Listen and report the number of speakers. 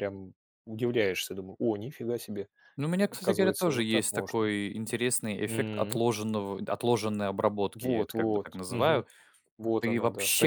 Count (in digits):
2